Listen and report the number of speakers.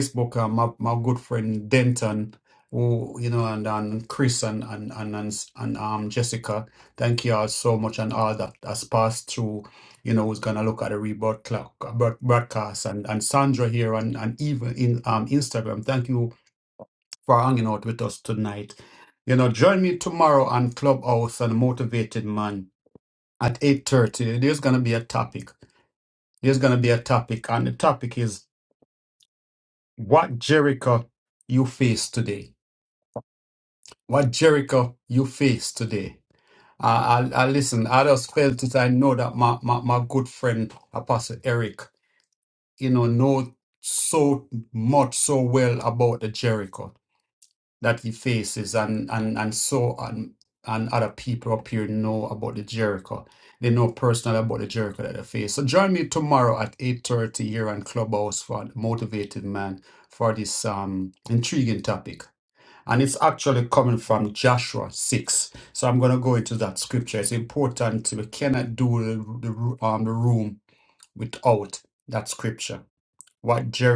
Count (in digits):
1